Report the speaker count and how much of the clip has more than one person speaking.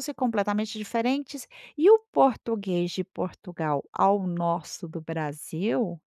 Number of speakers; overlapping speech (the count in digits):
1, no overlap